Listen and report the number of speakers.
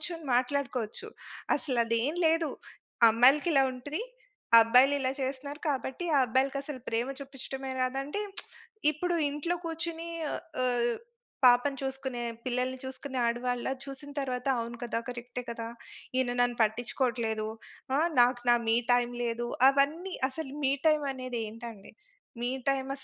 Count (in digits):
1